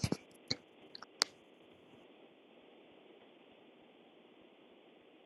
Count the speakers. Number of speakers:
0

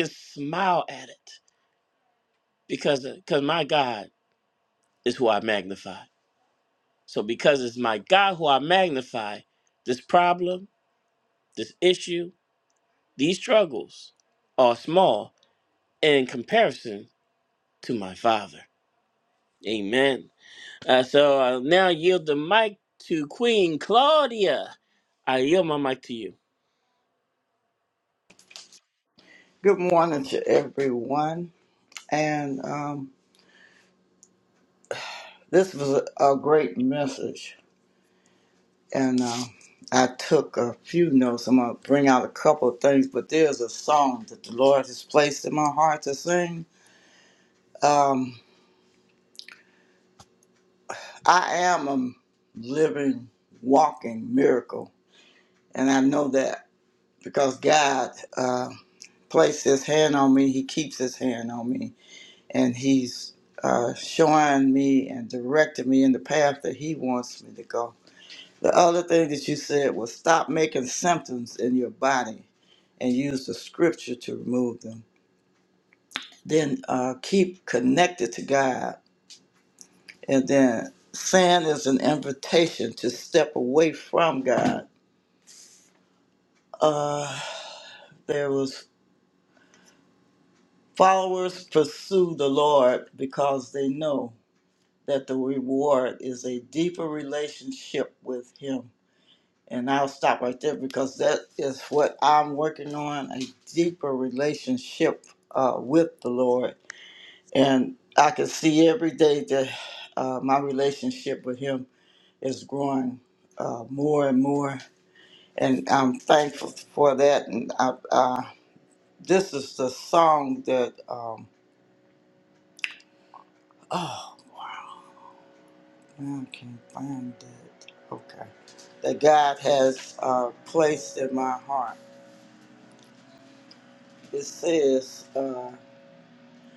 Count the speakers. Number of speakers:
2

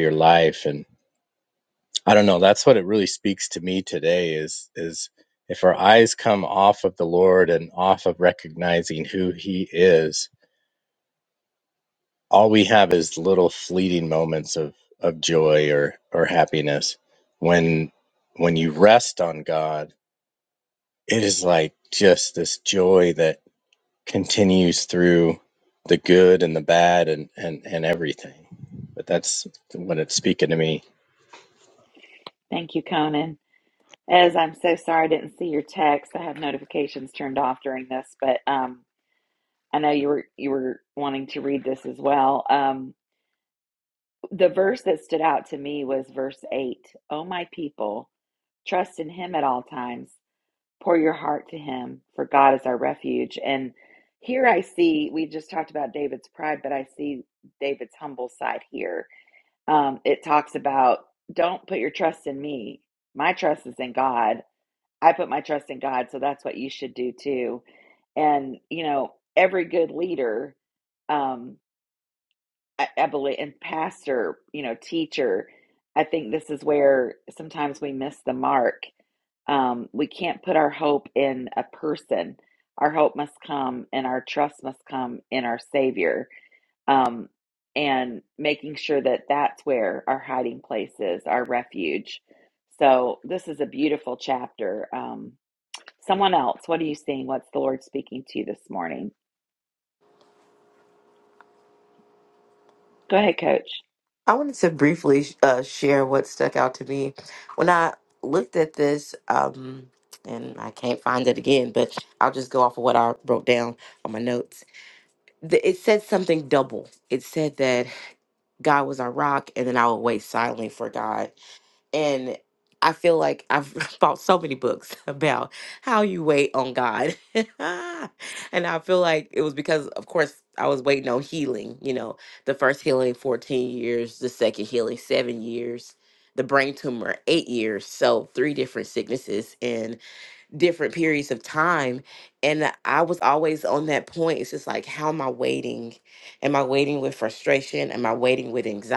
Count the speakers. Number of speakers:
3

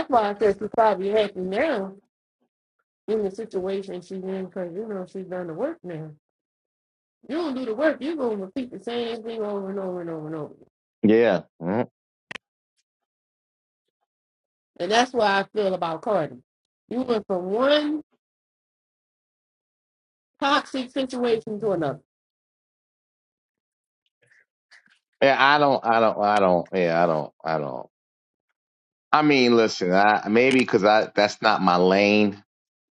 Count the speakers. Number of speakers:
2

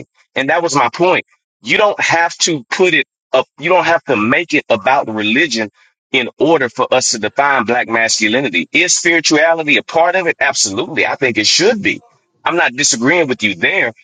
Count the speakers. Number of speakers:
1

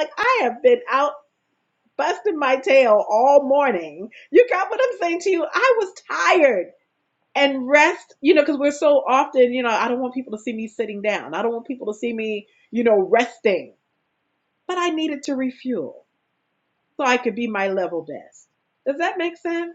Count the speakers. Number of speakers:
1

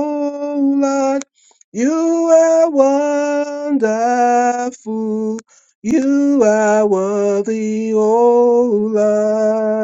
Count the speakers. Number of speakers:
1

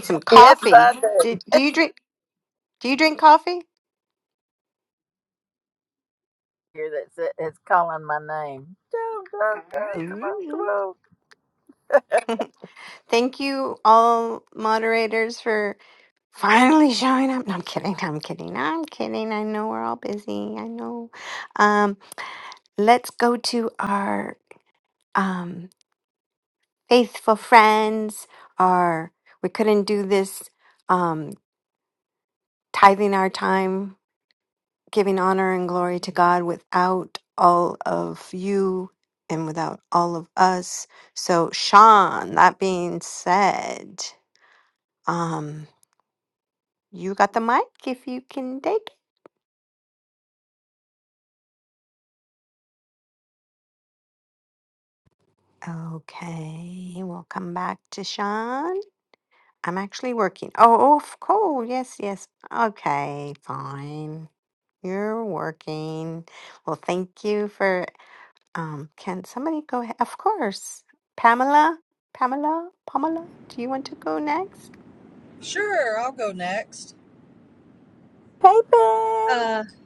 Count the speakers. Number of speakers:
3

